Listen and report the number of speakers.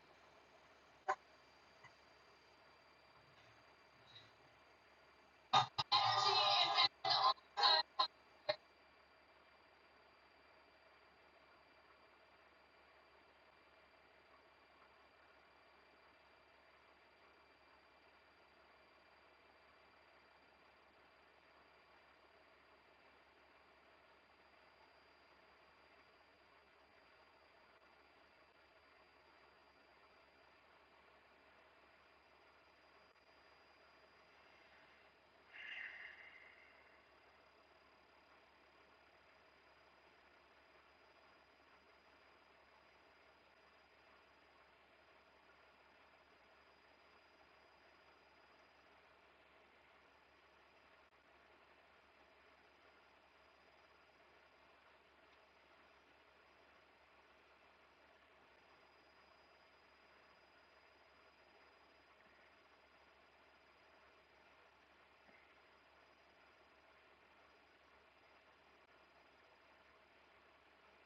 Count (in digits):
0